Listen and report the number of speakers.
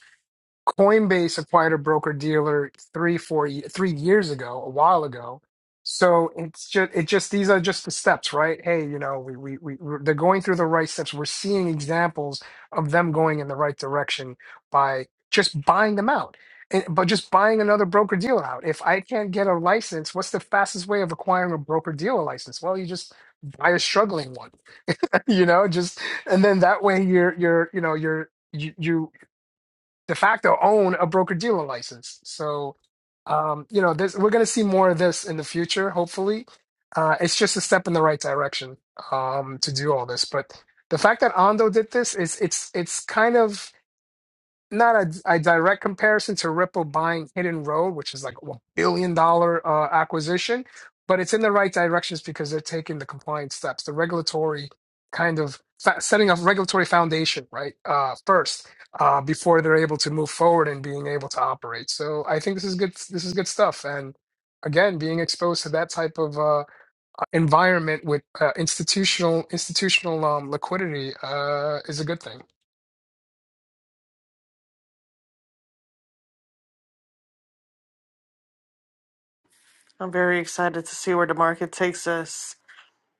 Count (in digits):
2